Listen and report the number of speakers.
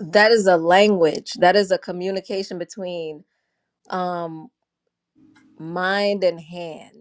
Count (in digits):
1